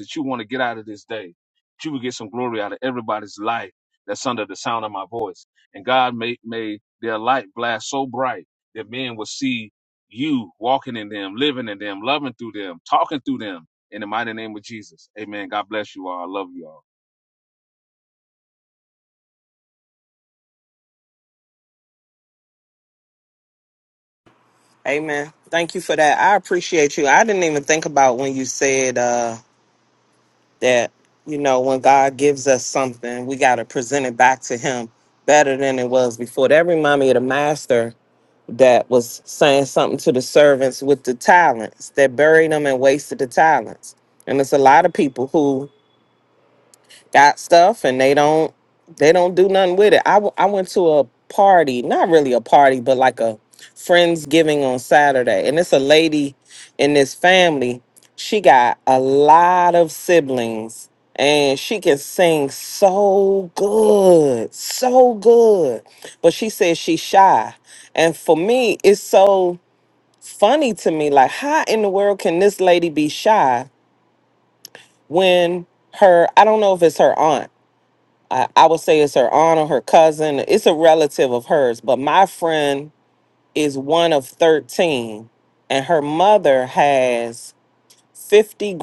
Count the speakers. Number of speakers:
two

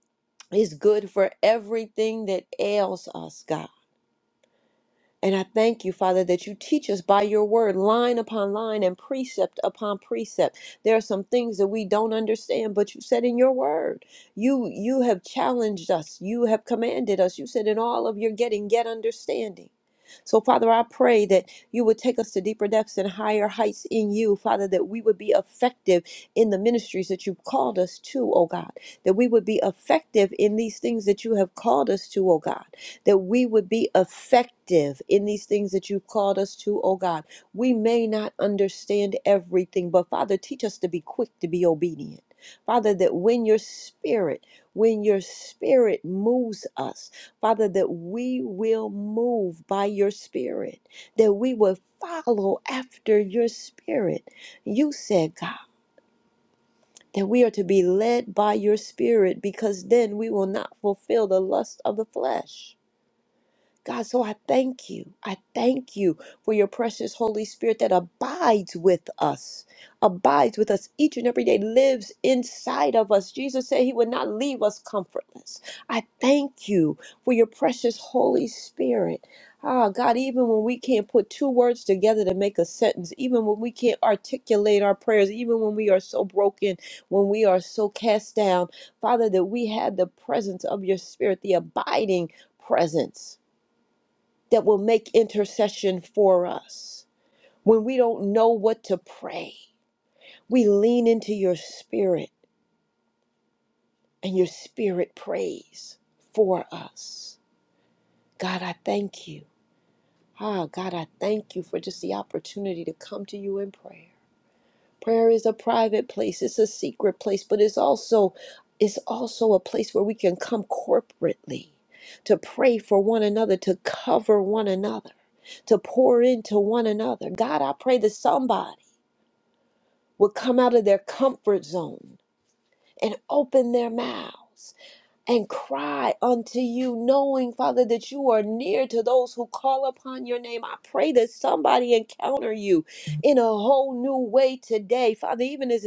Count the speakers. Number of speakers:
one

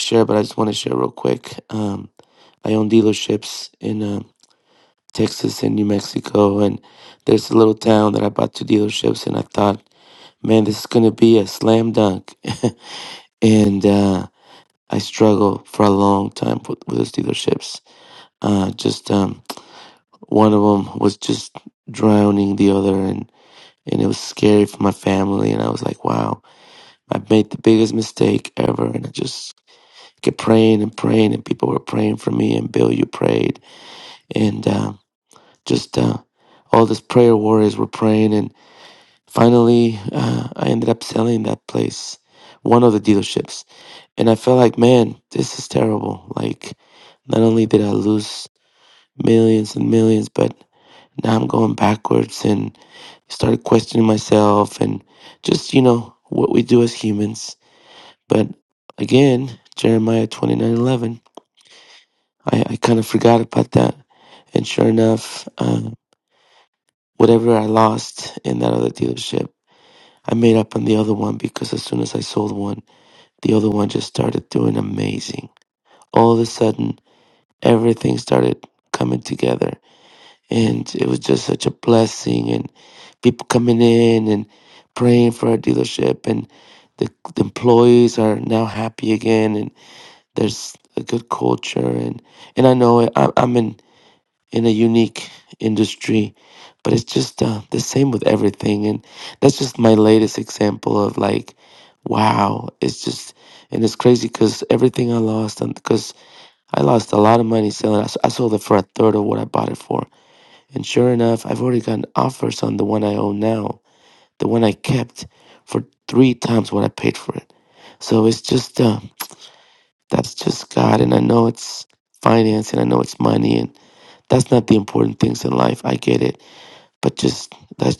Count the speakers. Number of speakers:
one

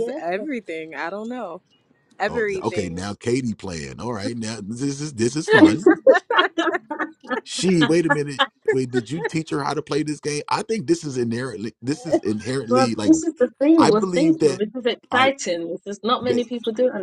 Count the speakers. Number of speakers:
three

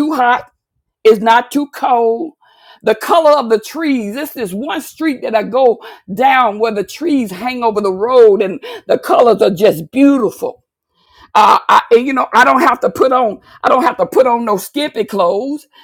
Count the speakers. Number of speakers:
one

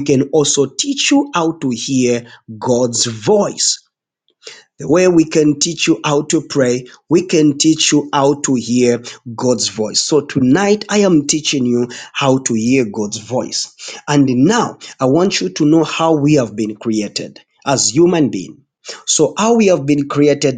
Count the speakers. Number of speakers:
one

